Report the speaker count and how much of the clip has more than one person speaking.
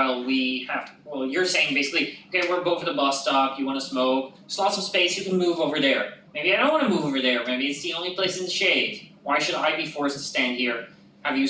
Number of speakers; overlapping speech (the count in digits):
1, no overlap